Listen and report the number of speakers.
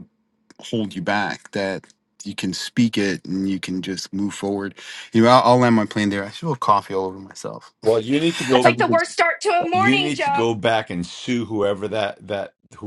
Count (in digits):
3